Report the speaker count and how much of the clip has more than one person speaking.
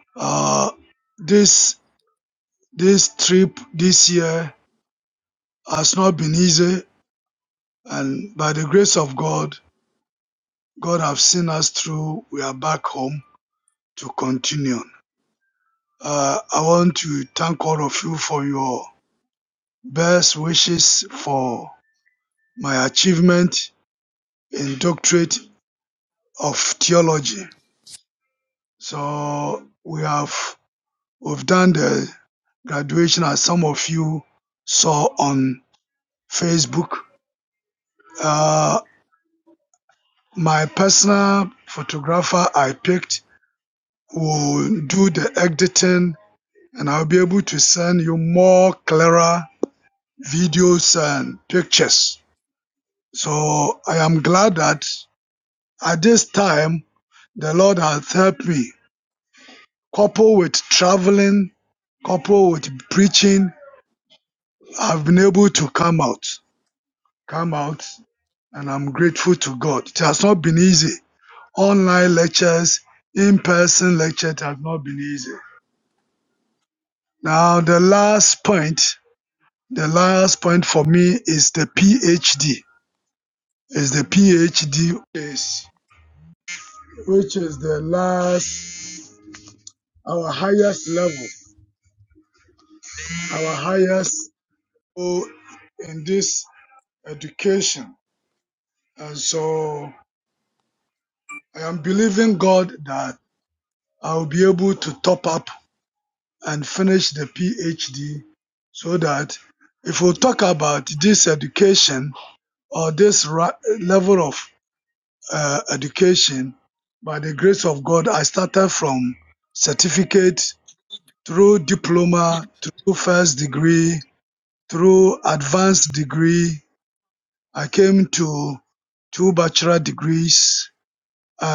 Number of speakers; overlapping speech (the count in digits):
1, no overlap